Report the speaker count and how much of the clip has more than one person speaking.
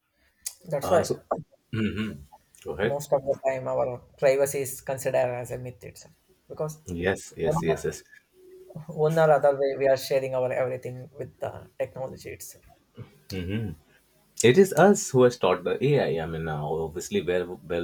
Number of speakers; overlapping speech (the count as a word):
two, about 3%